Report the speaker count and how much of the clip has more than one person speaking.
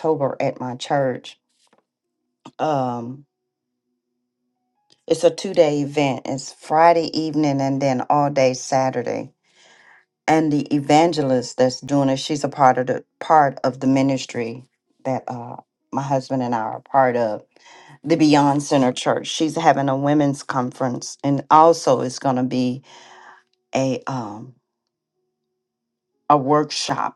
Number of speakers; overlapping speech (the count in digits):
1, no overlap